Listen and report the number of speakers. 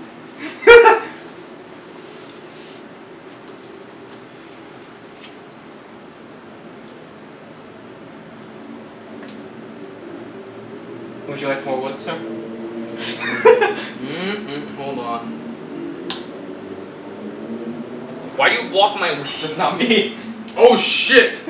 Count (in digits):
3